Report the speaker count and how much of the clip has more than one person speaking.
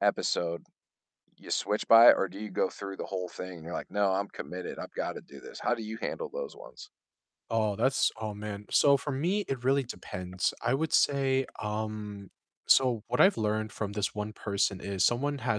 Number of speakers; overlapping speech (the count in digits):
2, no overlap